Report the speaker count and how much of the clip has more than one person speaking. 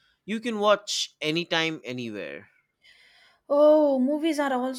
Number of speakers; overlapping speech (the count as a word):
two, no overlap